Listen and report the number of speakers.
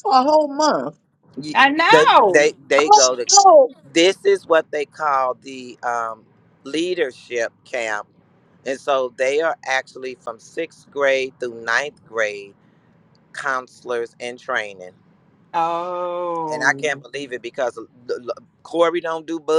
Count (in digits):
3